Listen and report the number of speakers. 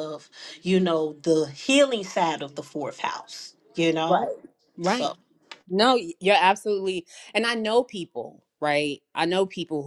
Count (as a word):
two